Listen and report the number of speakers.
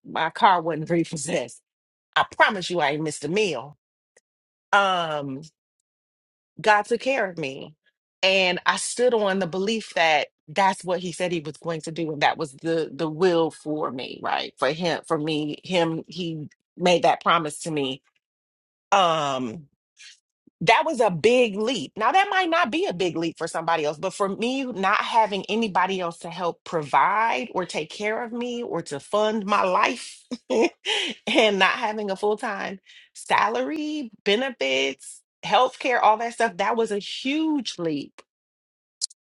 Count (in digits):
1